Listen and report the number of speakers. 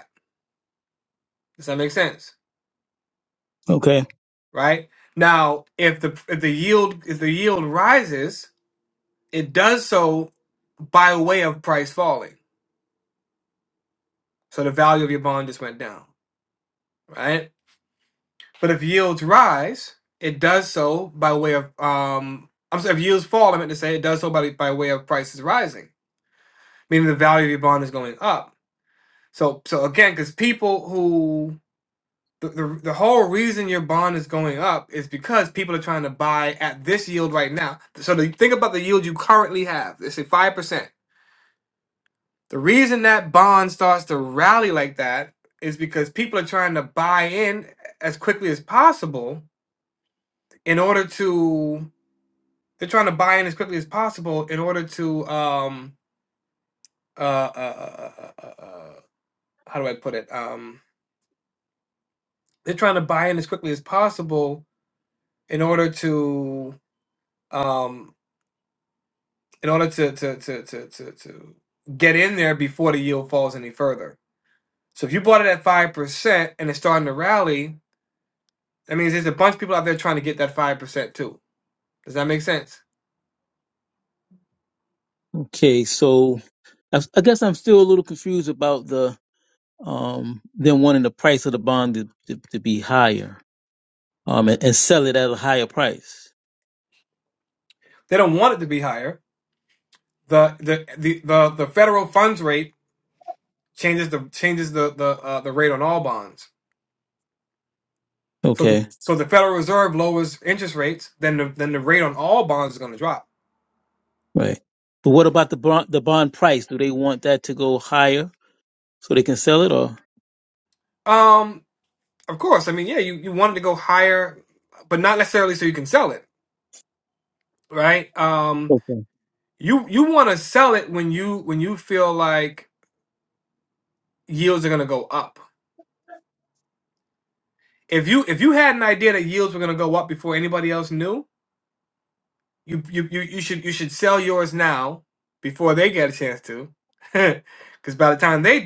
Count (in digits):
2